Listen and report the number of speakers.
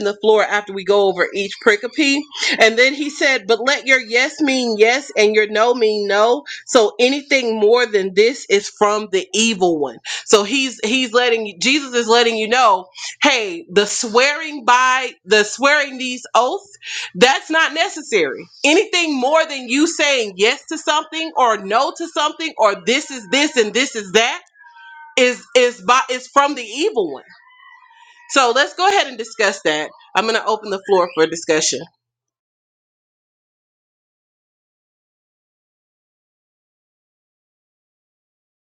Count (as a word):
one